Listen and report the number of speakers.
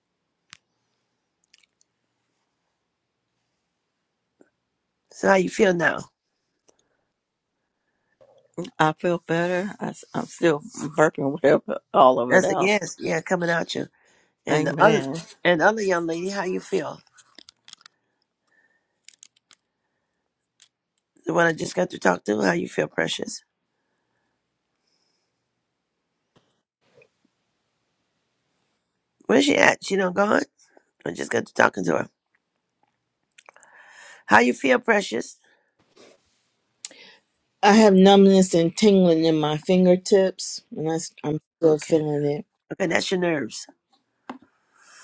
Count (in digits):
3